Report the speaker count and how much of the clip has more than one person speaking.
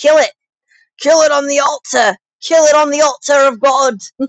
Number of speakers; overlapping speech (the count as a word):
one, no overlap